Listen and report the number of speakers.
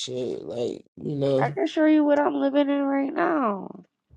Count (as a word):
two